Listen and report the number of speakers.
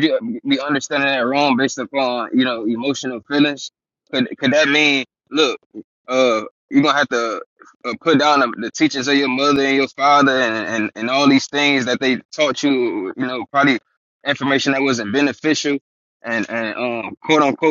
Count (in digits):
1